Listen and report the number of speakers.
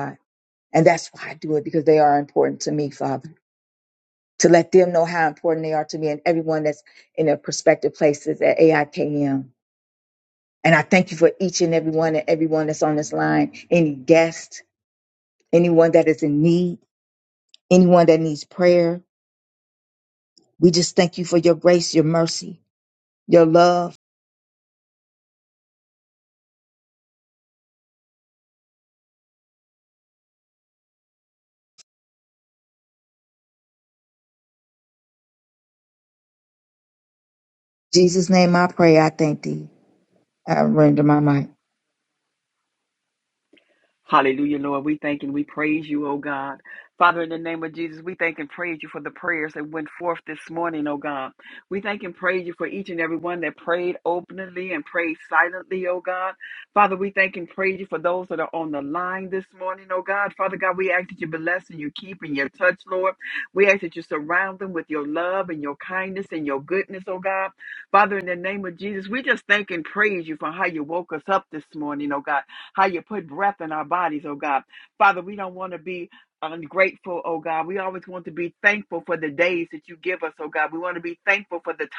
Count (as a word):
two